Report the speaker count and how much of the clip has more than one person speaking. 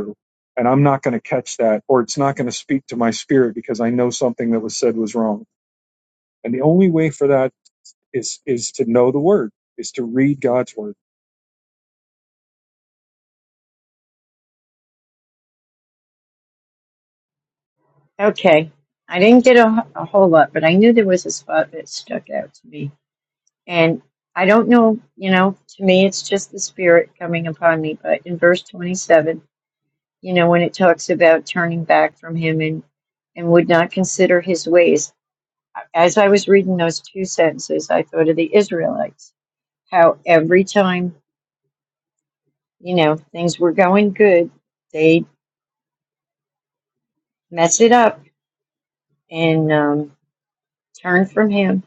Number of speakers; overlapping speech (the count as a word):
two, no overlap